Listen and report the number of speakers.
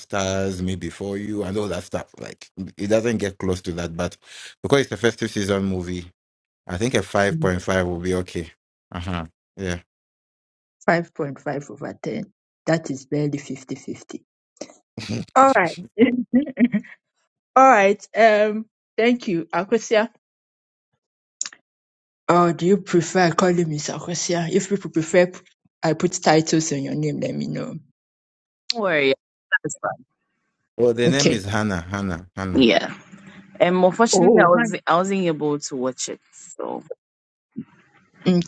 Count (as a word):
three